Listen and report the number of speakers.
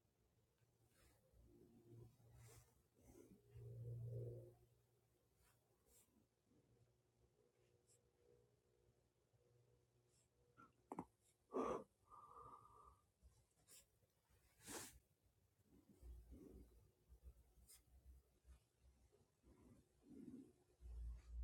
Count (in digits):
0